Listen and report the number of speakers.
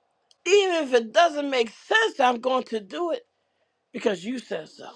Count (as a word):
one